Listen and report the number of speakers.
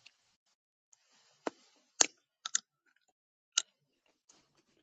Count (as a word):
zero